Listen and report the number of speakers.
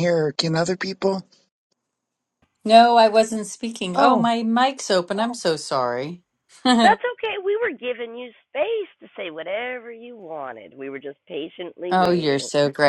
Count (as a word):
three